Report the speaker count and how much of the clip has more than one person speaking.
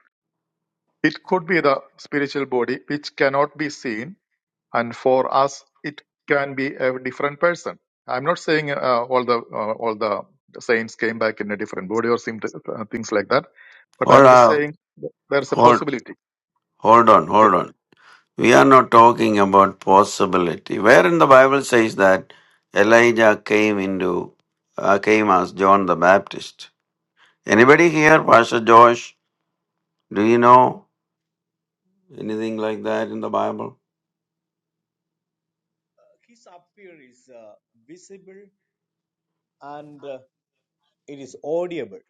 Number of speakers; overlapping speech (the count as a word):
three, about 2%